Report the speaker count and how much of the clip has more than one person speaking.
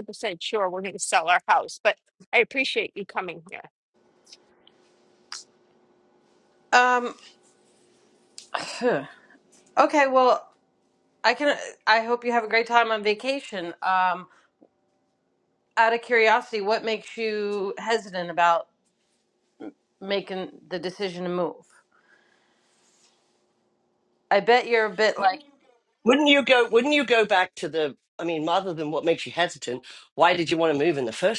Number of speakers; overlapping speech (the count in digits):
3, no overlap